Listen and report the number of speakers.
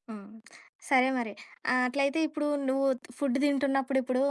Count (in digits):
1